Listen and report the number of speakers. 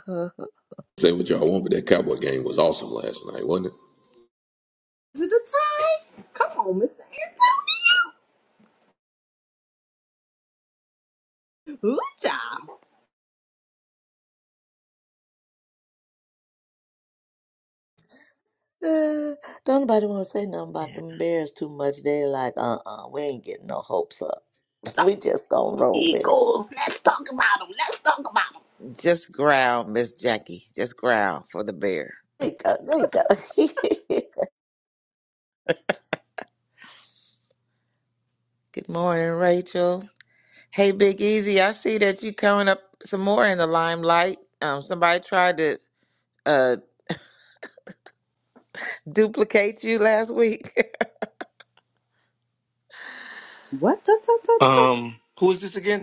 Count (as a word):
five